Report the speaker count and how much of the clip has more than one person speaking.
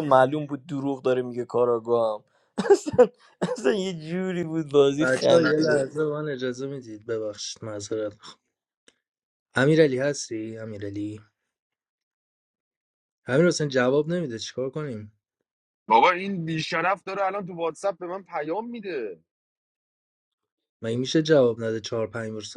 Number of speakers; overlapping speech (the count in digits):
3, about 4%